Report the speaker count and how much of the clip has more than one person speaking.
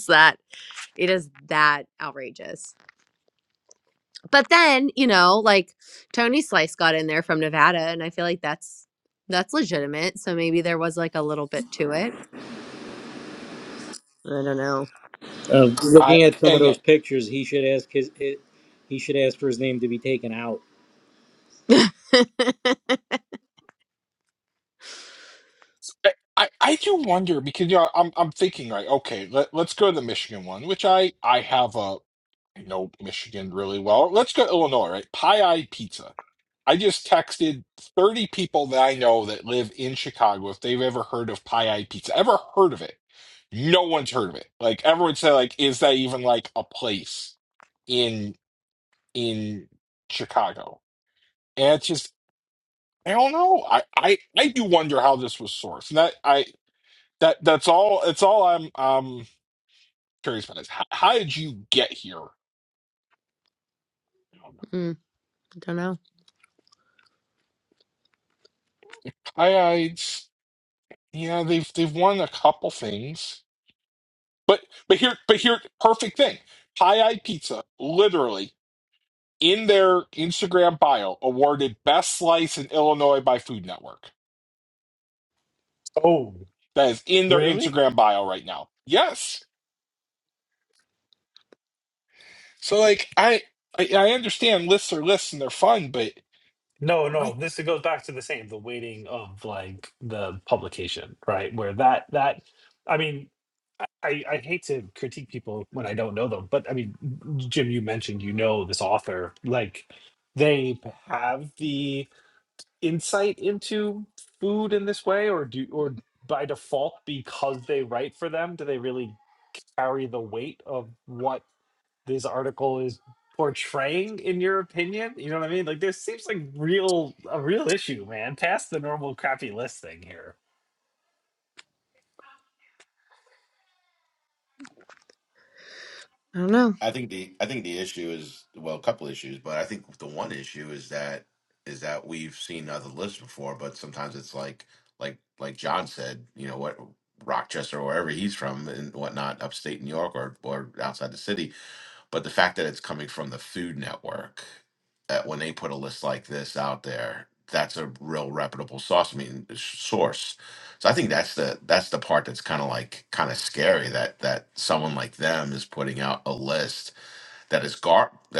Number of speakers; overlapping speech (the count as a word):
five, about 1%